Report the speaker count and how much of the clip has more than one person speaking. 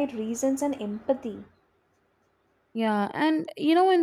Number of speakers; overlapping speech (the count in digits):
2, no overlap